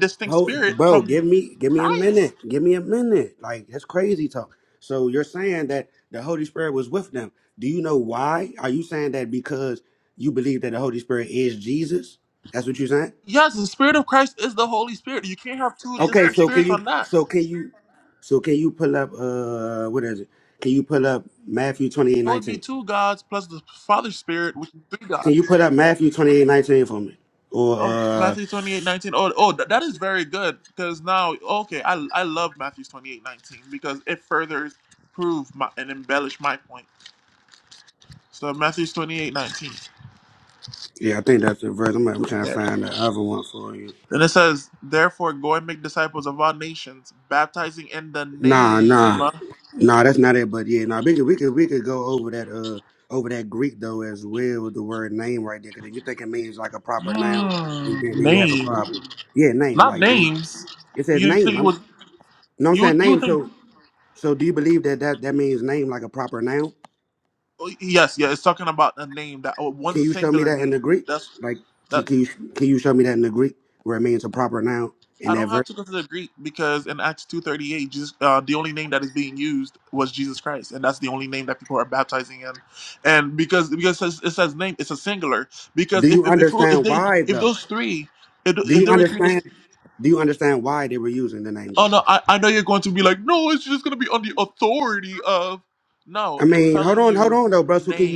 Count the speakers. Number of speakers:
2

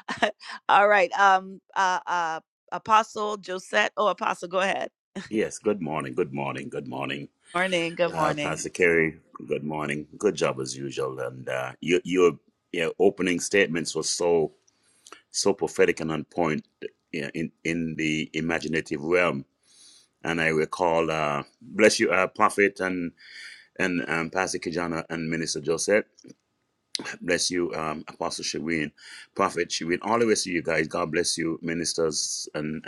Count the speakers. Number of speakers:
2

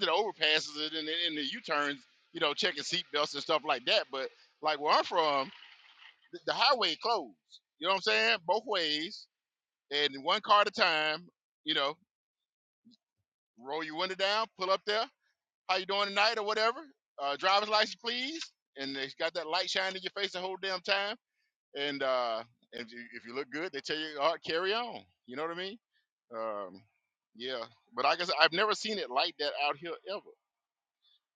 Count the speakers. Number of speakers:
1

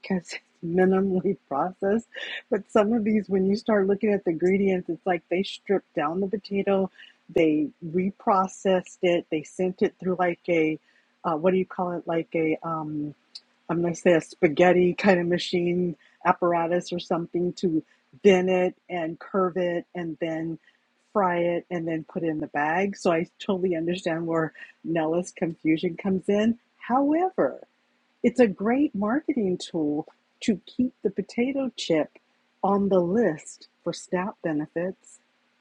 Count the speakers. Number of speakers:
1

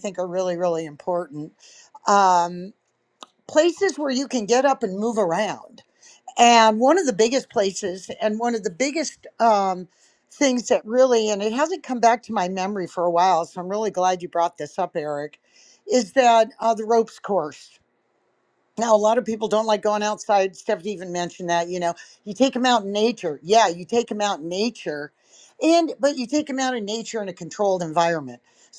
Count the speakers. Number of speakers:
1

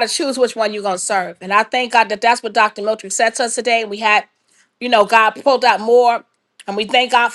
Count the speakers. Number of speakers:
1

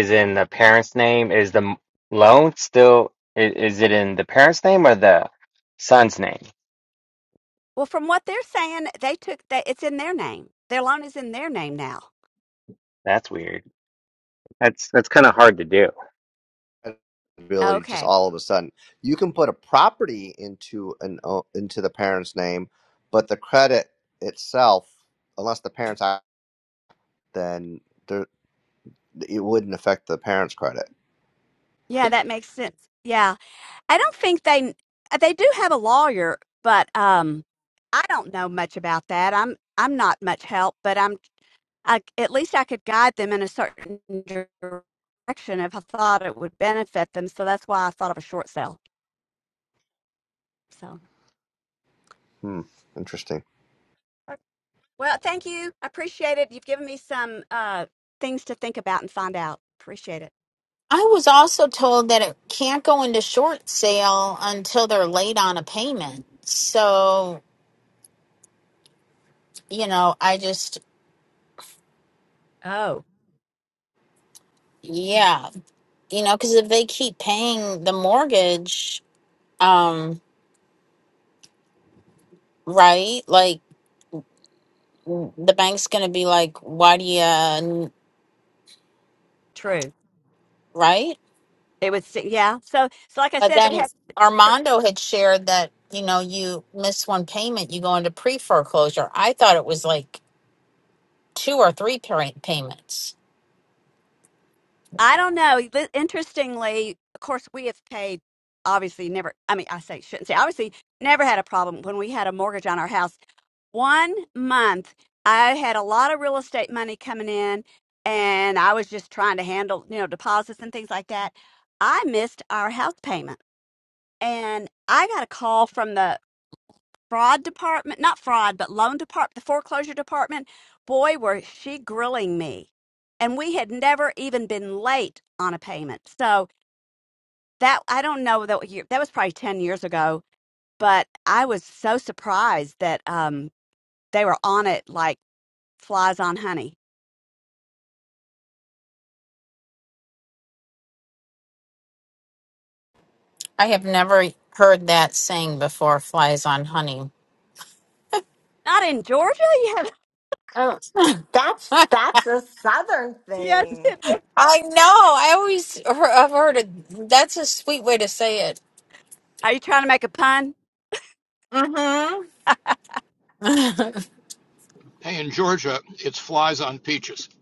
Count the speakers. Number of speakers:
6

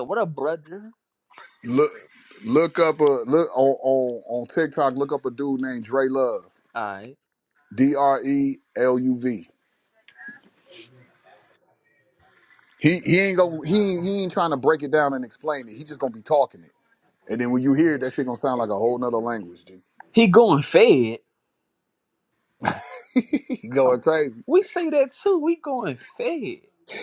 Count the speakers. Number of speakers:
2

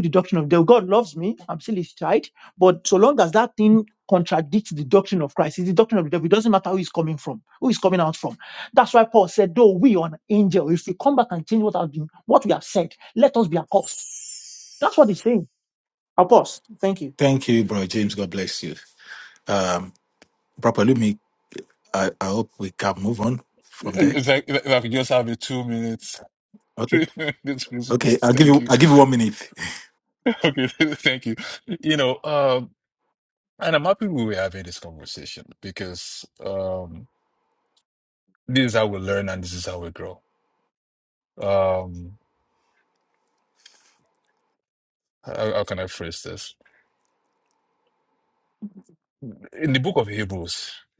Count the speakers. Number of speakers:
3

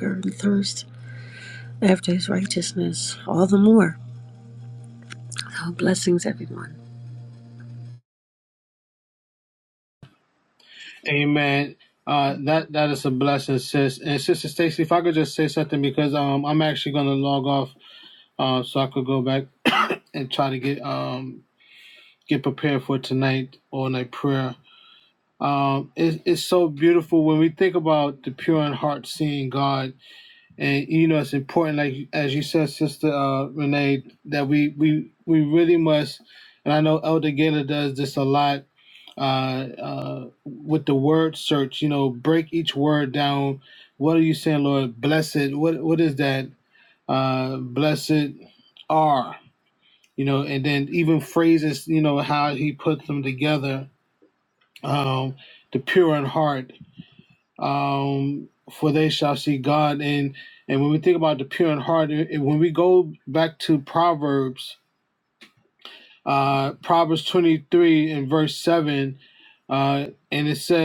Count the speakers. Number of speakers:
2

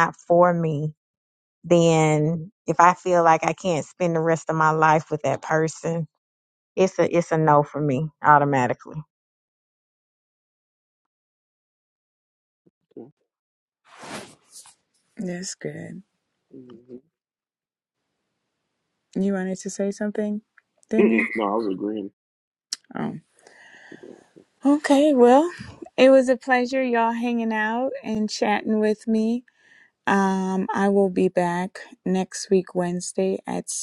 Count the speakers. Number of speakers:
3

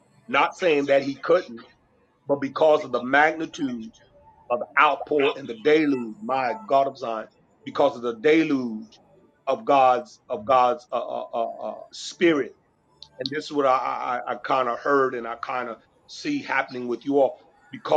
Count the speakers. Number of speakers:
1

